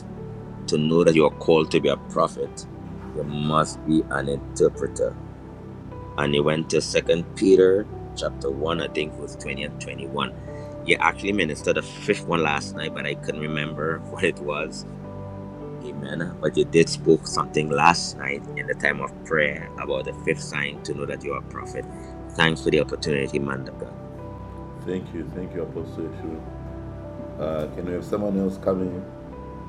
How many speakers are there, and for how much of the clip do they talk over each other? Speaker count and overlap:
2, no overlap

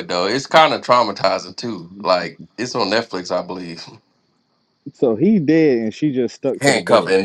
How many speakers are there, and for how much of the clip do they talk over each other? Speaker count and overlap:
2, about 8%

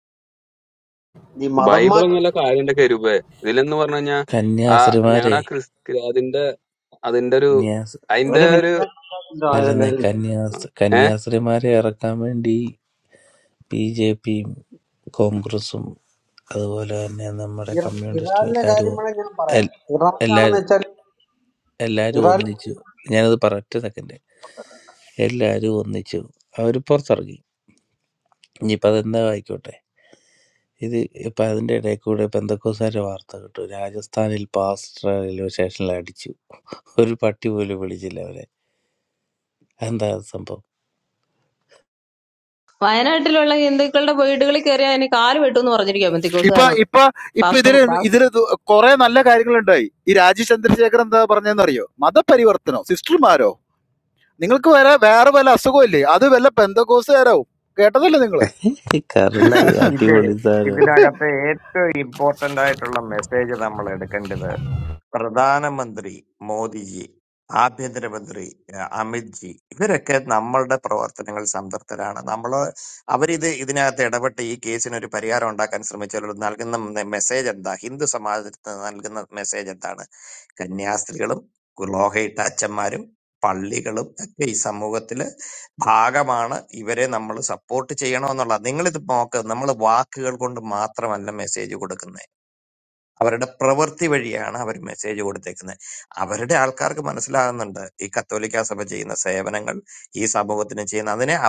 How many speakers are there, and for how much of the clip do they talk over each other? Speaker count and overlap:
6, about 6%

